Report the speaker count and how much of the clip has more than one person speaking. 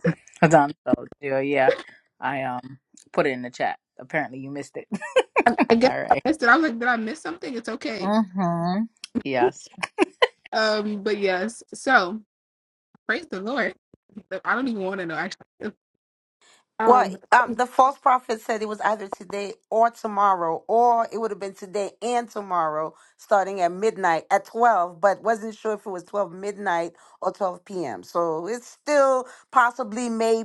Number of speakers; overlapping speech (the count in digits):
3, about 3%